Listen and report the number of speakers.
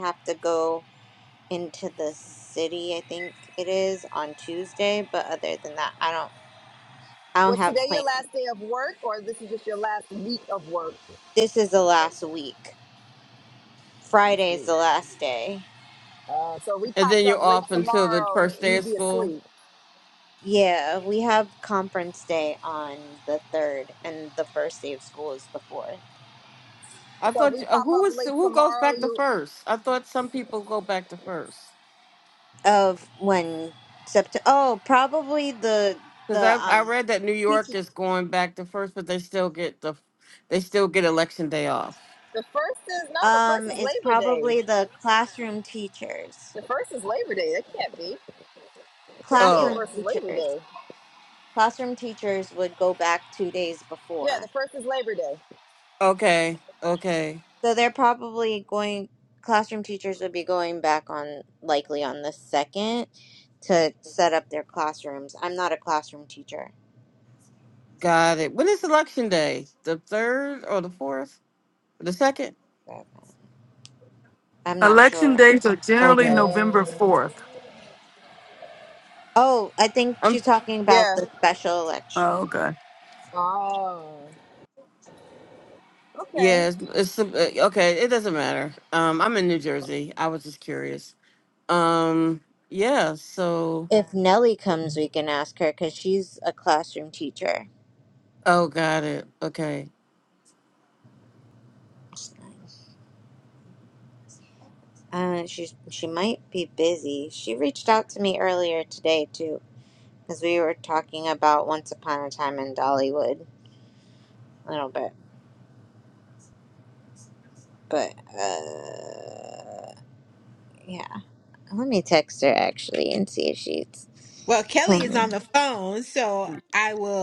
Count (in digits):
5